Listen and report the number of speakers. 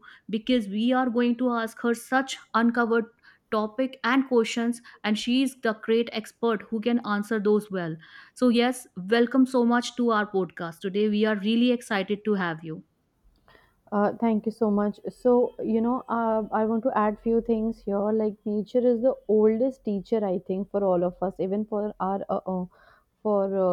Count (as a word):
two